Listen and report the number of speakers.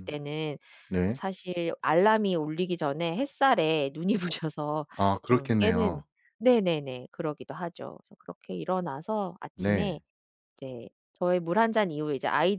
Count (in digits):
2